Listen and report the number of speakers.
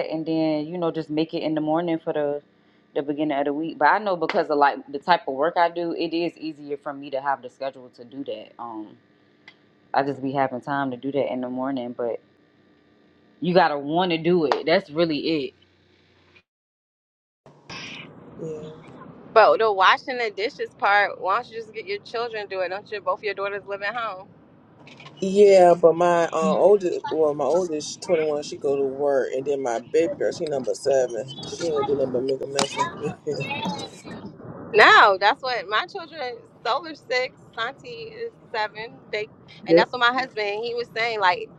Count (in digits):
3